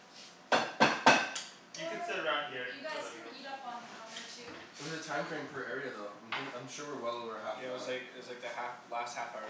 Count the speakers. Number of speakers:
4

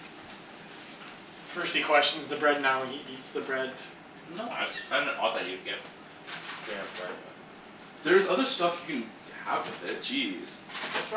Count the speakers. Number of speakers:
3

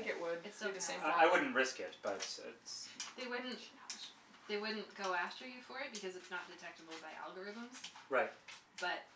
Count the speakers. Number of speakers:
3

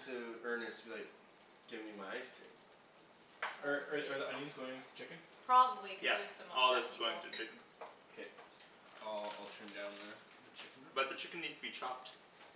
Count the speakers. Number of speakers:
4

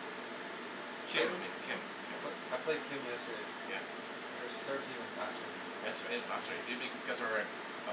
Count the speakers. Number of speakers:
2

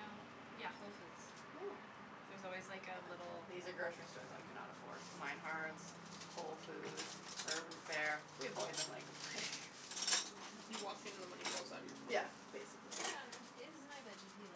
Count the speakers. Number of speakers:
3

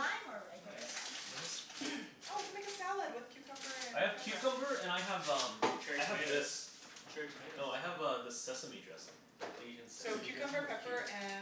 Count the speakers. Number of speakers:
4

